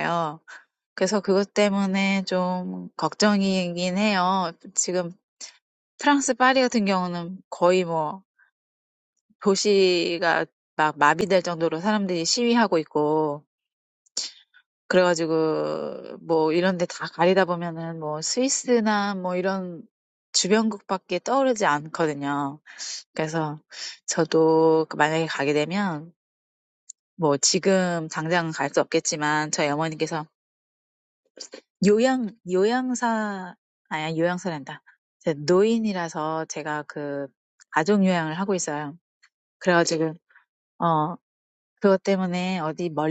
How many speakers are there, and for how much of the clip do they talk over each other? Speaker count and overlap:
1, no overlap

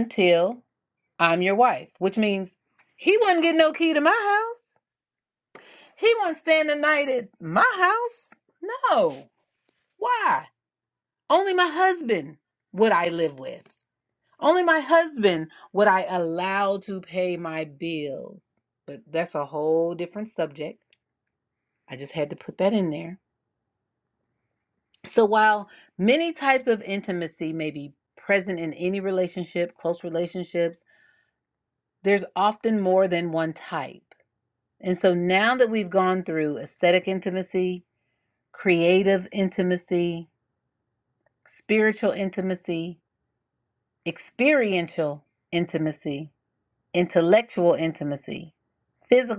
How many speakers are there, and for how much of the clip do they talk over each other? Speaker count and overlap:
1, no overlap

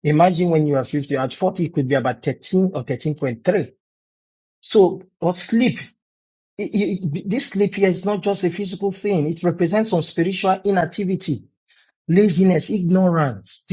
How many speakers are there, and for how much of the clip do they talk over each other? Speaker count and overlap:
1, no overlap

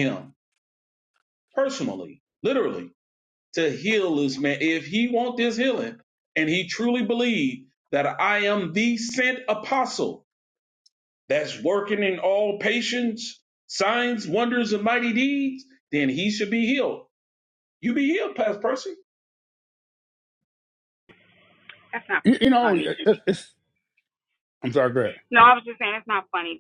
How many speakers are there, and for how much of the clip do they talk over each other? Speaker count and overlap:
3, about 2%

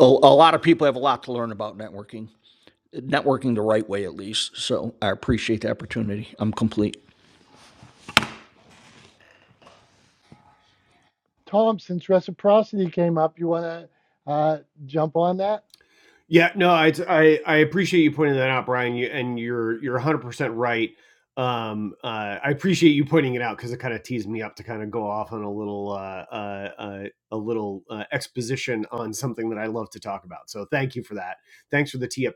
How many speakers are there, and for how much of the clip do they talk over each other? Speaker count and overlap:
3, no overlap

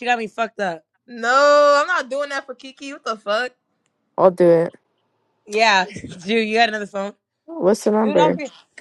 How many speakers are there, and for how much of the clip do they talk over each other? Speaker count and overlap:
3, about 4%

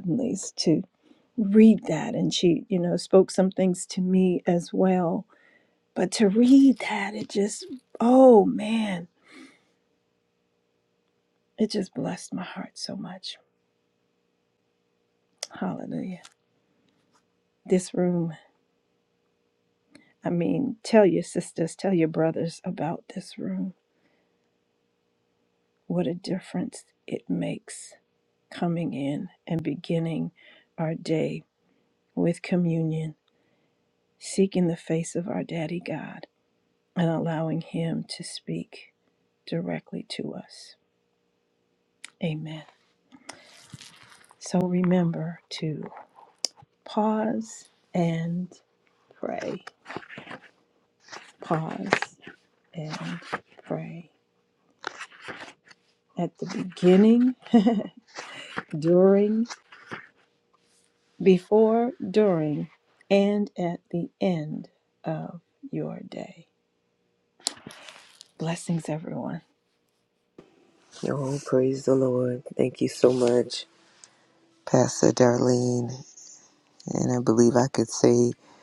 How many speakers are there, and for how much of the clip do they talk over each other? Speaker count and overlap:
2, no overlap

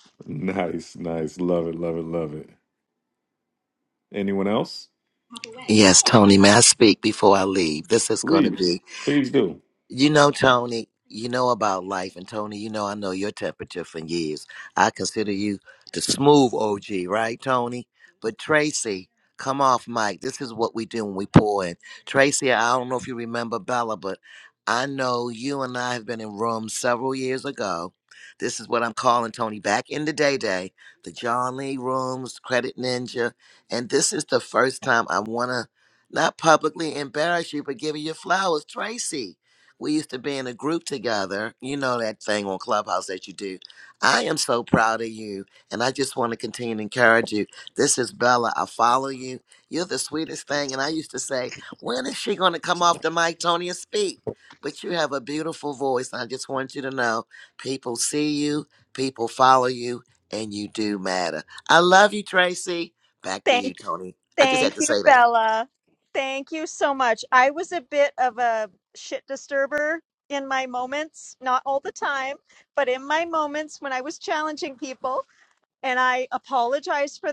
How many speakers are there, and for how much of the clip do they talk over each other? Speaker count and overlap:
3, about 2%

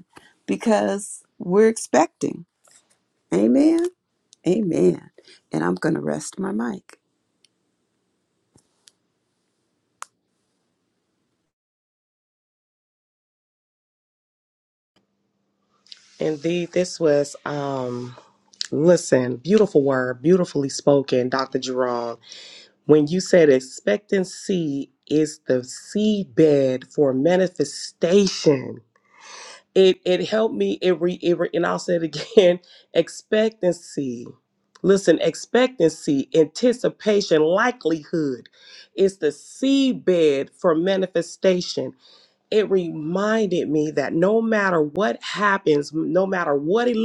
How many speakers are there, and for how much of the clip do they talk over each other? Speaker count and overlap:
2, no overlap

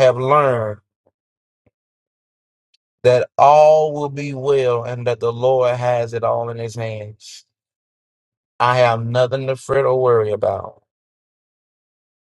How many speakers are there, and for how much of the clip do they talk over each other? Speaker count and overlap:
1, no overlap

